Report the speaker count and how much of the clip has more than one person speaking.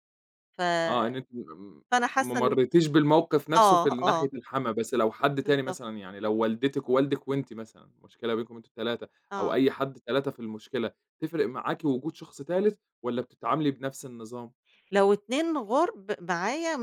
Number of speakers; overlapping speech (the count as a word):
two, about 10%